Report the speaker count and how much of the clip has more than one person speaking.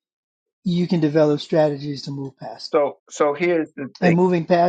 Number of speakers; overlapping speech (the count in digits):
2, about 4%